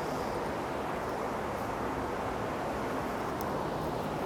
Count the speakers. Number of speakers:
0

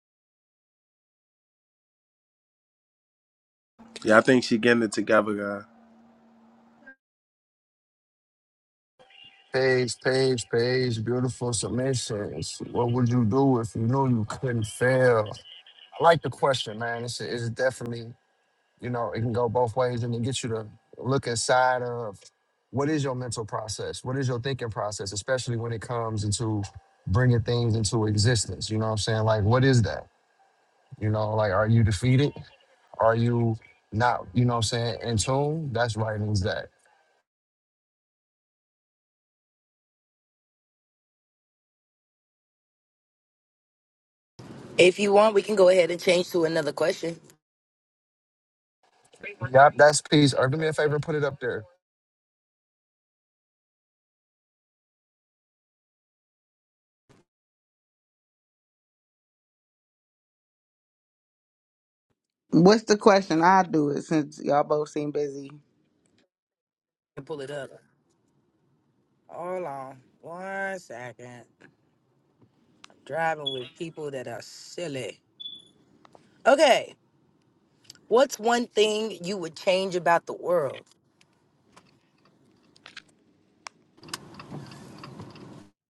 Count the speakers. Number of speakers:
4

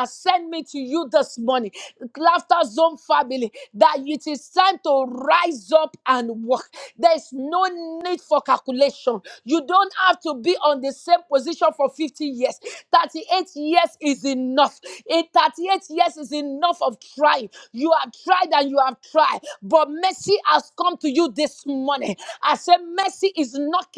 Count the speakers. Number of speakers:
1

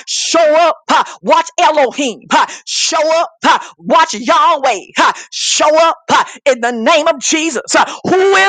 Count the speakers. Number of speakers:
1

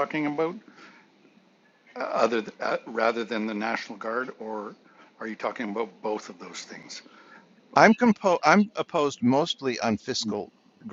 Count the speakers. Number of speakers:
2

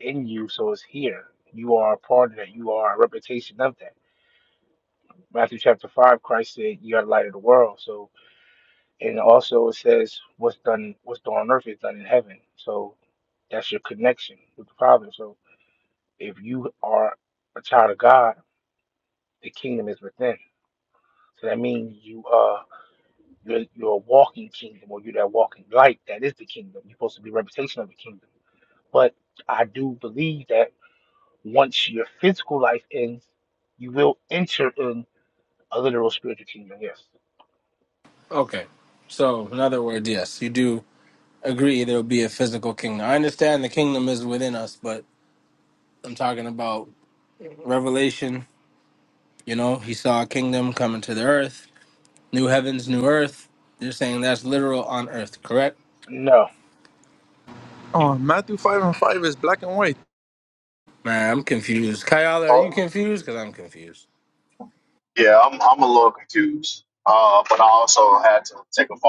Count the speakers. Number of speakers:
4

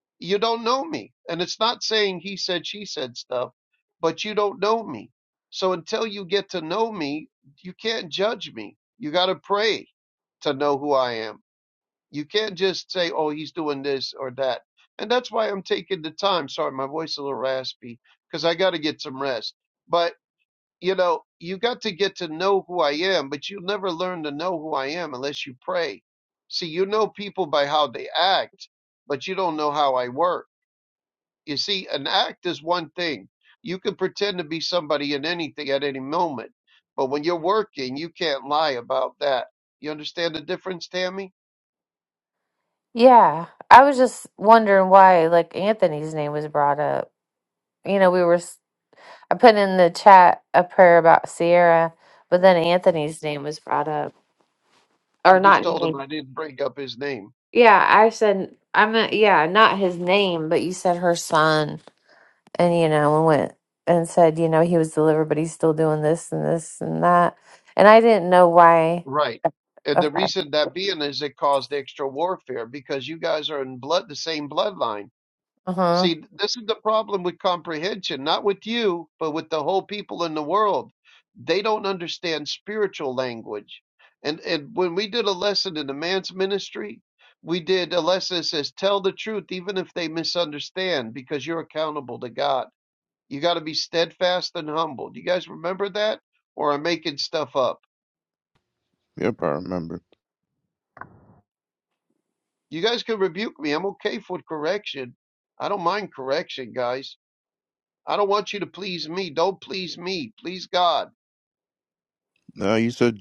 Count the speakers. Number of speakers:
3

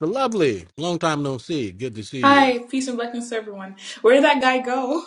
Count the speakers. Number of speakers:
2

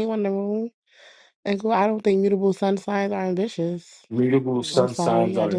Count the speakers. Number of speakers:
2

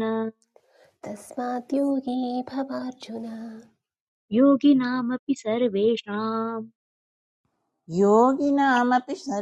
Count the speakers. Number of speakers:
3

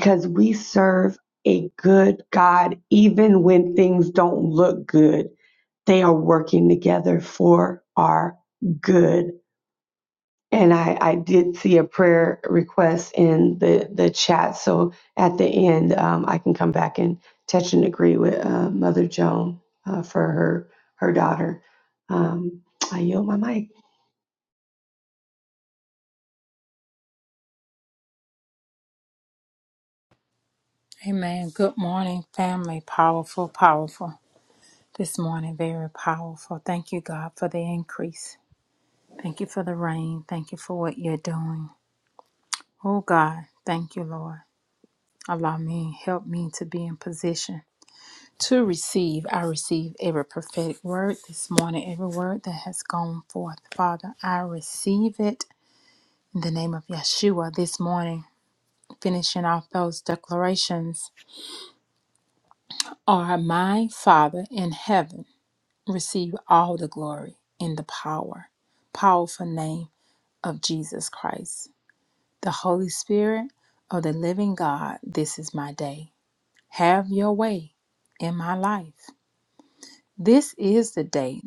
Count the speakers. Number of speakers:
2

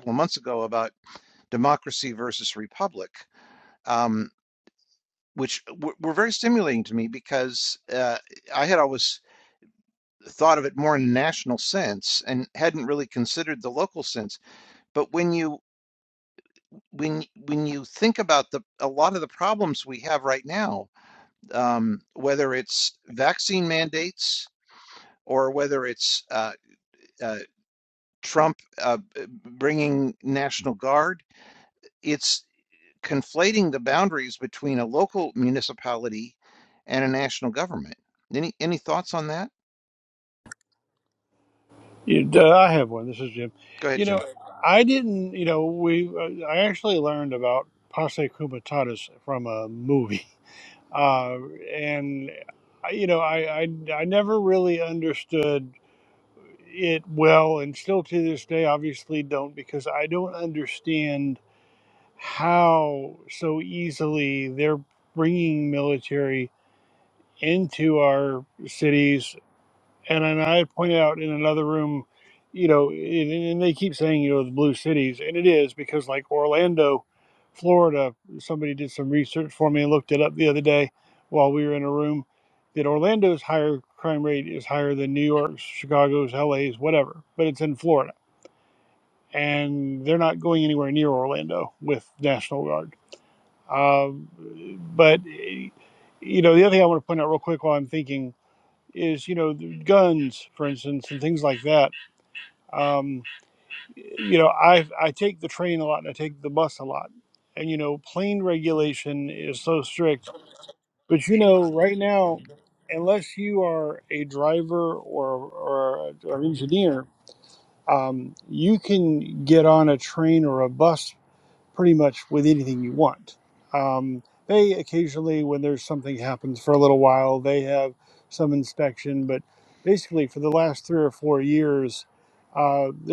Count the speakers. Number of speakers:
2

